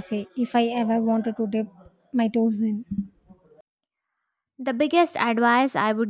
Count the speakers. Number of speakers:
two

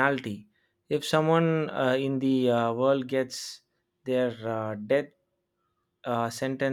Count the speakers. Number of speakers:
one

